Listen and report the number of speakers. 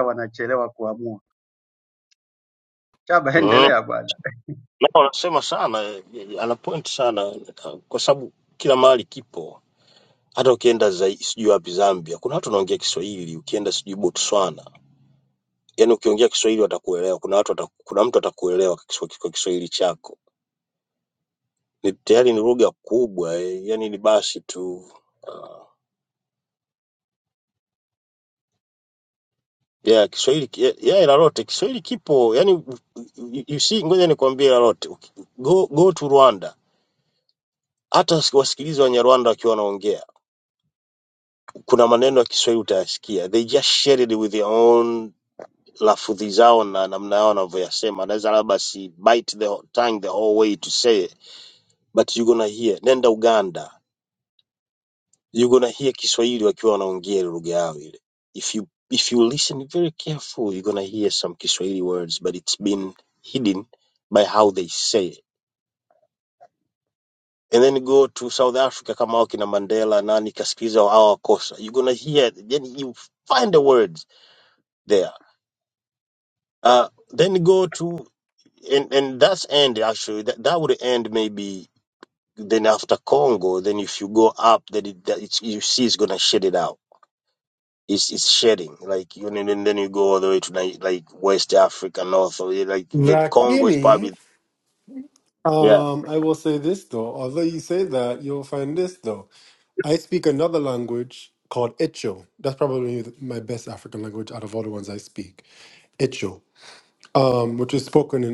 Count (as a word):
three